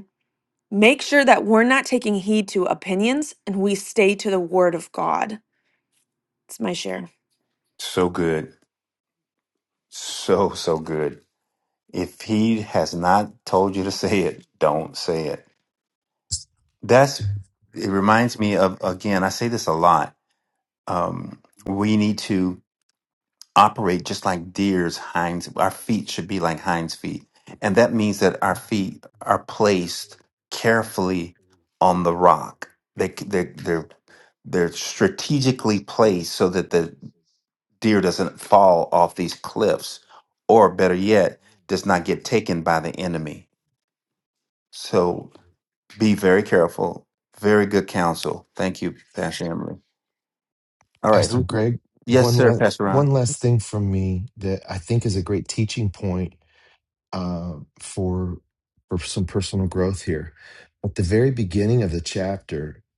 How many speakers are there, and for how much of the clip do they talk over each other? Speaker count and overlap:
3, about 2%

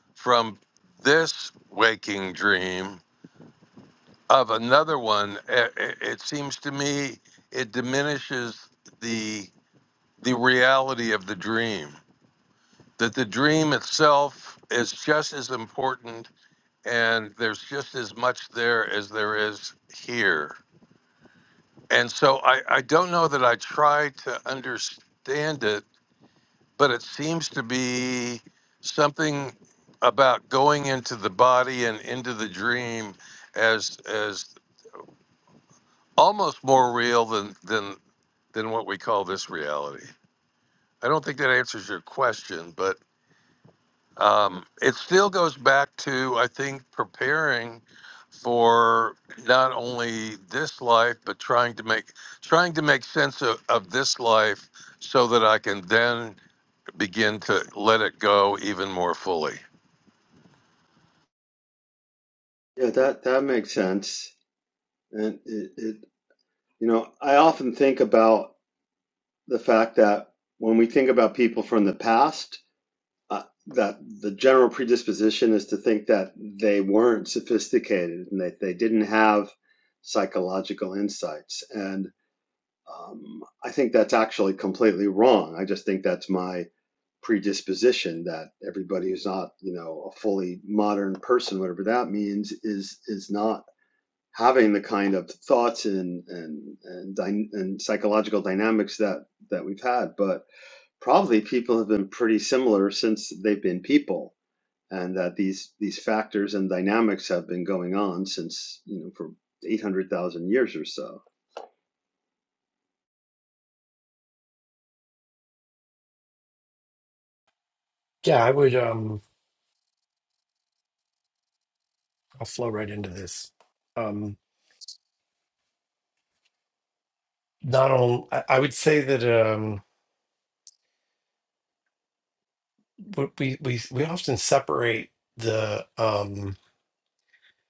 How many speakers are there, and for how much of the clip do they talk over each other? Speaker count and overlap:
3, no overlap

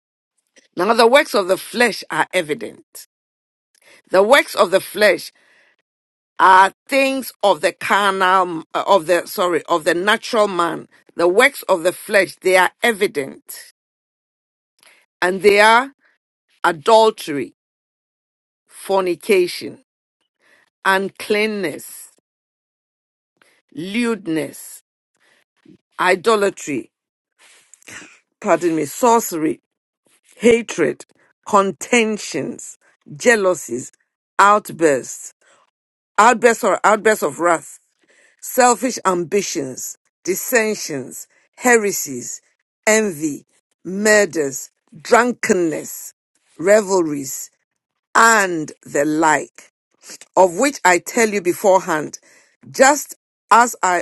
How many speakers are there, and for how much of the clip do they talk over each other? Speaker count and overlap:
1, no overlap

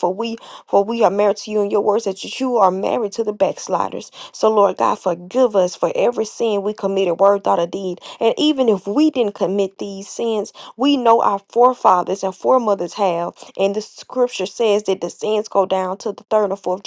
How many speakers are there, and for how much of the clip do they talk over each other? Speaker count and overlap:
1, no overlap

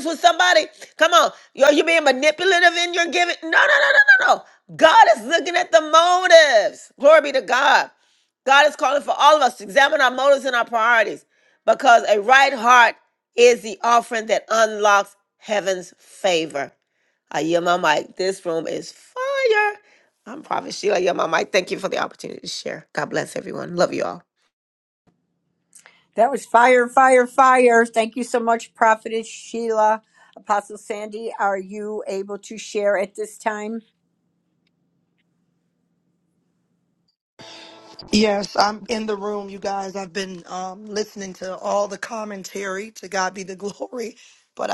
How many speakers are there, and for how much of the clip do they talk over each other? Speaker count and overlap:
3, no overlap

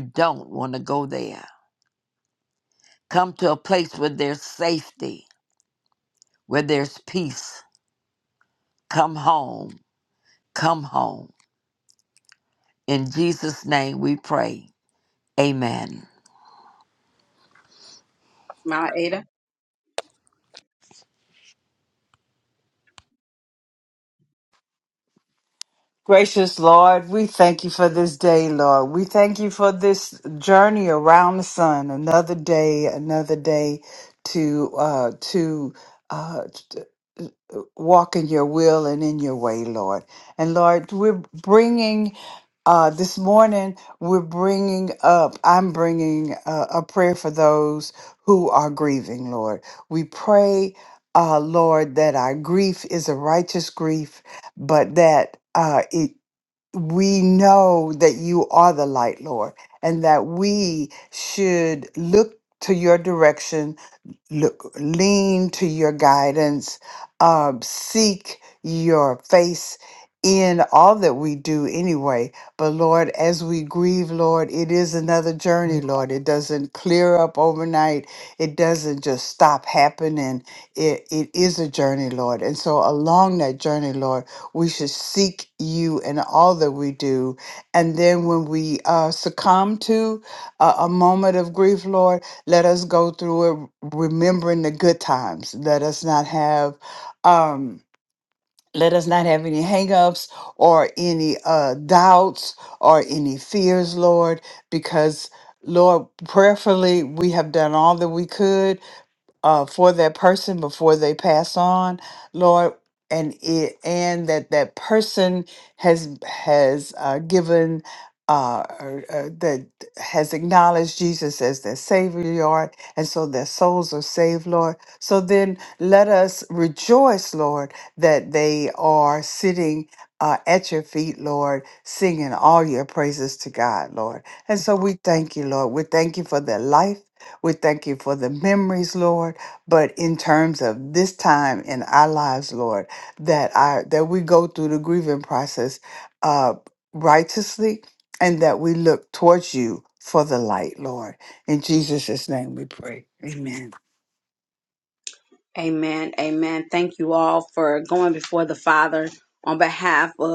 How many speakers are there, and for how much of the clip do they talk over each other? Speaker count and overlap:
3, no overlap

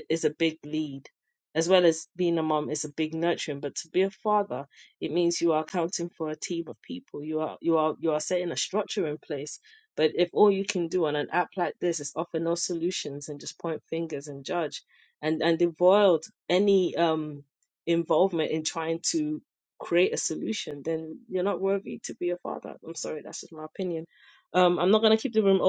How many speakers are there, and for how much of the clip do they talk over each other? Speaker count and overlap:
1, no overlap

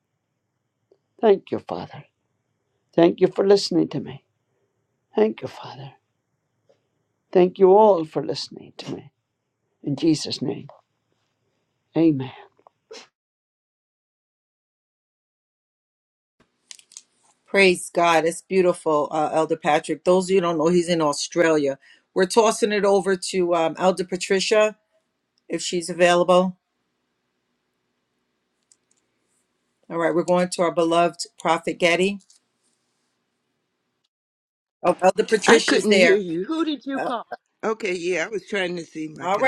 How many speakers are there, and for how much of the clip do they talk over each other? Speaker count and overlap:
3, about 3%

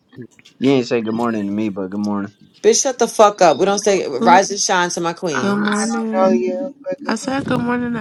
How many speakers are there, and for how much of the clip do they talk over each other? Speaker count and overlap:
4, about 21%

